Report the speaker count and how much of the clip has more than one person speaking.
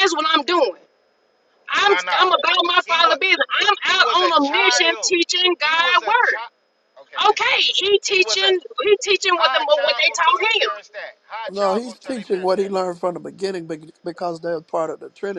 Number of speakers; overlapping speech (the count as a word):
three, about 39%